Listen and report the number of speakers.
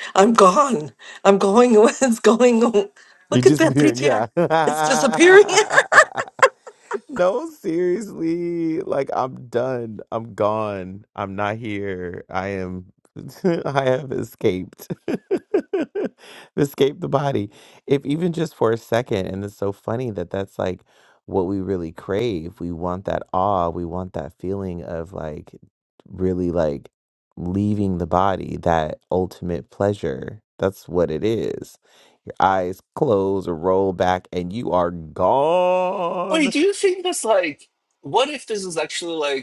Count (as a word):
three